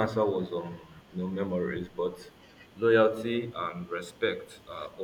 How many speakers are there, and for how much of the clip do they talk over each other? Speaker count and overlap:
one, no overlap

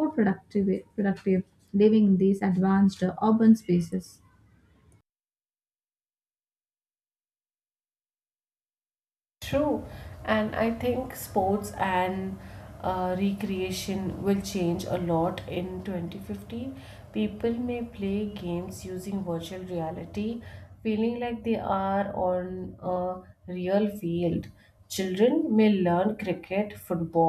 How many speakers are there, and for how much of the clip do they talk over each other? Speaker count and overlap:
two, no overlap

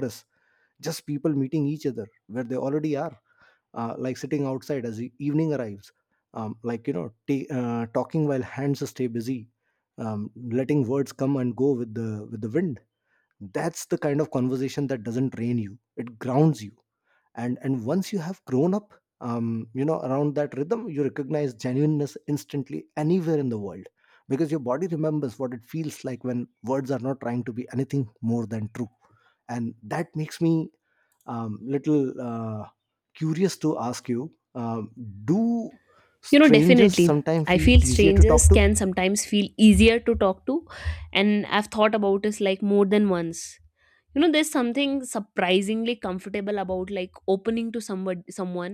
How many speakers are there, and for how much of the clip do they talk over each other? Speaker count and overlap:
two, about 5%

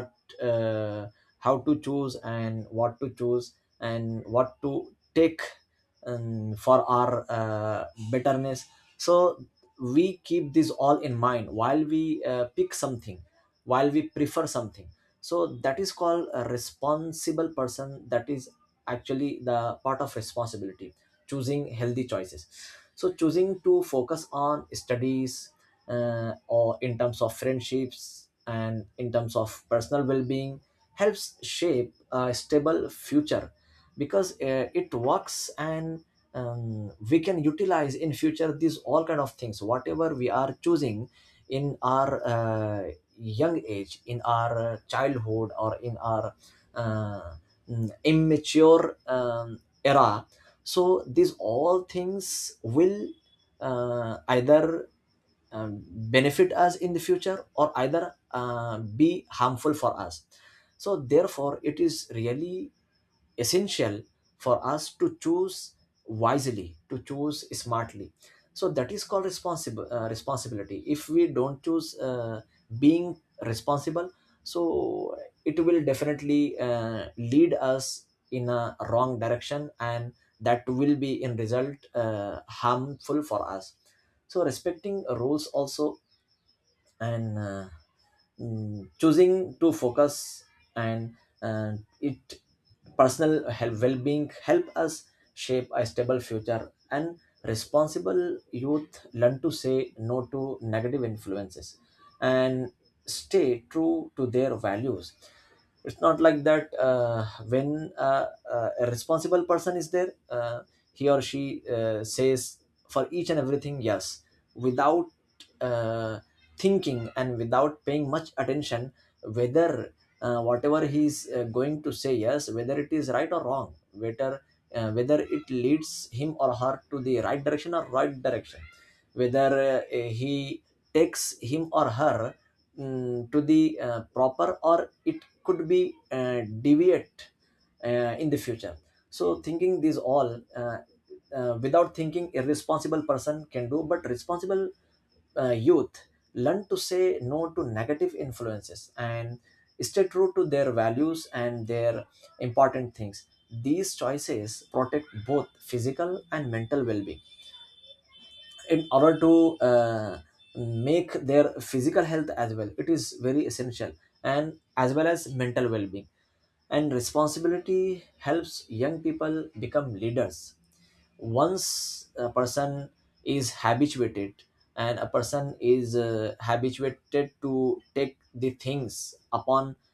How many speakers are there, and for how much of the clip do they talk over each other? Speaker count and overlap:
one, no overlap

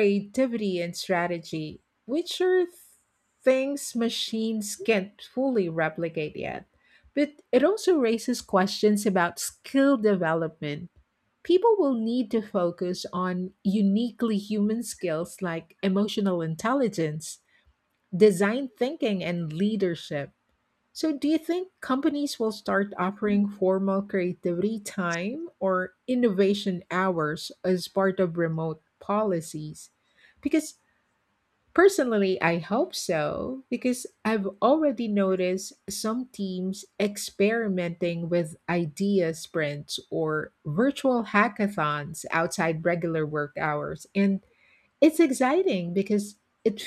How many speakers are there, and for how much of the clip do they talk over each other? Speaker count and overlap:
one, no overlap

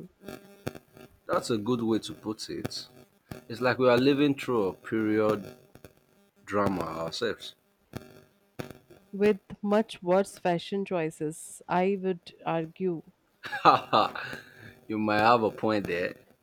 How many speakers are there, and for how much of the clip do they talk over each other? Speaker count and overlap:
two, no overlap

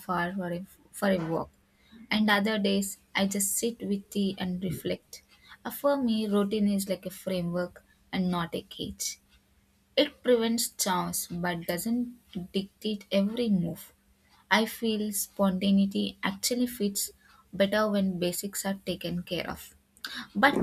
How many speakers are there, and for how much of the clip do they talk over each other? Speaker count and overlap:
one, no overlap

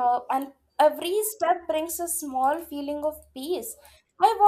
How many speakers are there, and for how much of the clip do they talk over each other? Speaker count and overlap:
one, no overlap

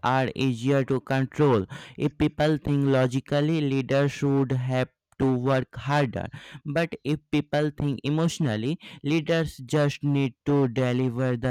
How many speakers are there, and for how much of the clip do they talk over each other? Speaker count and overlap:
one, no overlap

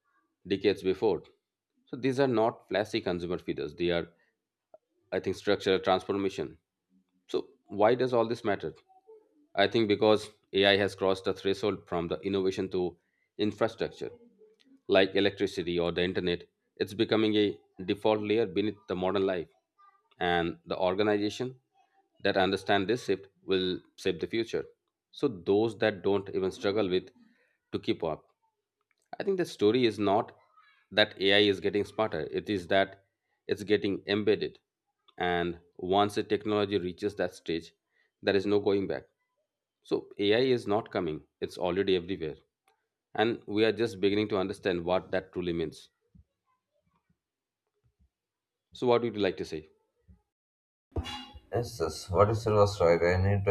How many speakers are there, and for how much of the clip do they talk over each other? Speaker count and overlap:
two, no overlap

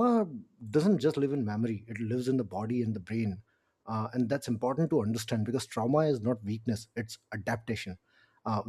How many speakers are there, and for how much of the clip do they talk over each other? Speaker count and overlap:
one, no overlap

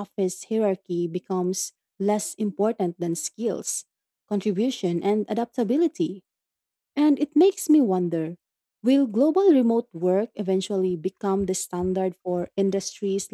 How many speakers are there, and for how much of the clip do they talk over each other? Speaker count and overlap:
one, no overlap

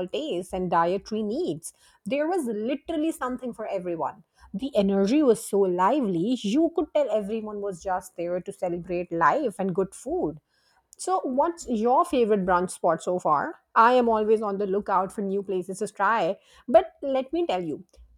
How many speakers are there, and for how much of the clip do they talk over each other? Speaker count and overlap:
one, no overlap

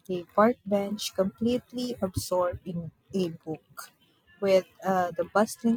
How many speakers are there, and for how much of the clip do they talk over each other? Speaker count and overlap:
one, no overlap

